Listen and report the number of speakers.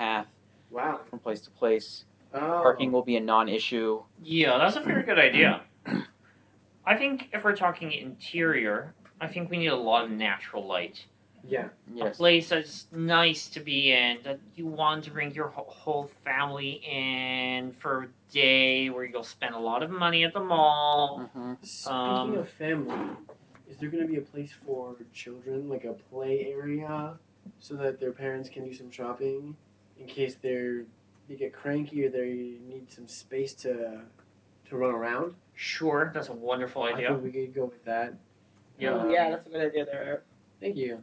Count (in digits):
4